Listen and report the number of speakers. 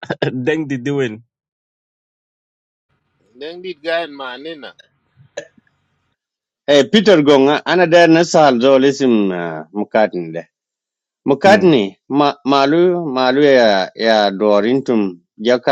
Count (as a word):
three